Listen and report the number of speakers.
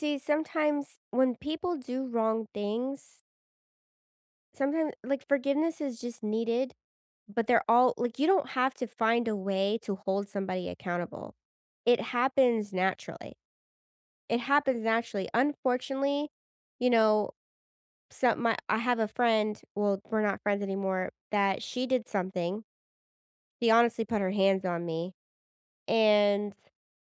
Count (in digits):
1